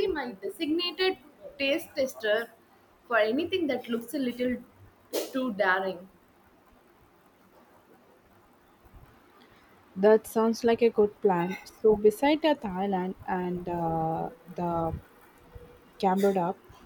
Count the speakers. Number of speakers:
two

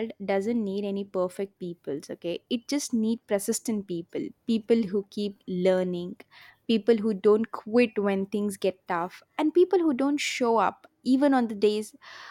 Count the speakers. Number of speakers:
one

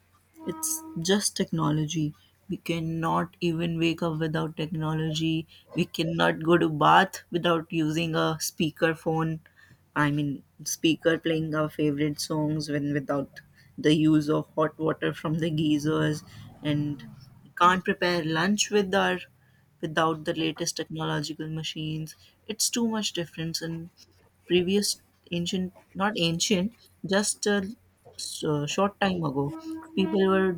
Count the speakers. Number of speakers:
one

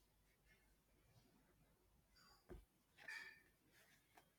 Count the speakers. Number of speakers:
zero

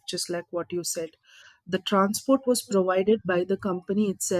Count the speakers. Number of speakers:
one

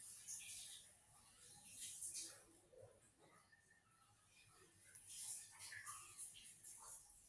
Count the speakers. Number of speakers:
zero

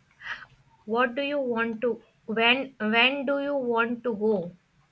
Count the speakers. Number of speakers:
one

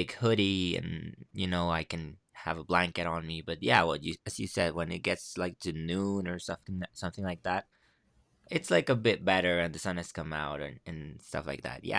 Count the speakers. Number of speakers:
one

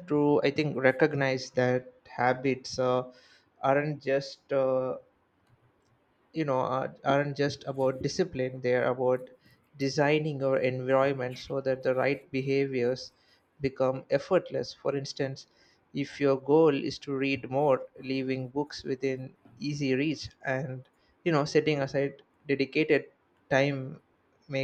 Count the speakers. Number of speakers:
one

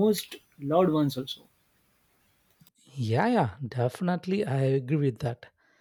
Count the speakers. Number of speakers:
two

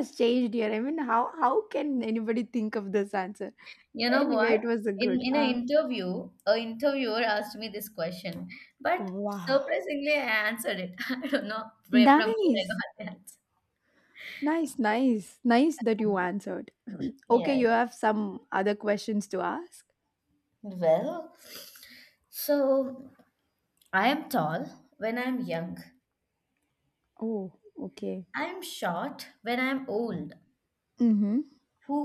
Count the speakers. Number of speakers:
two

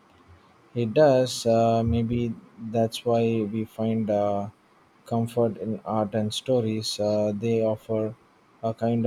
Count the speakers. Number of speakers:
one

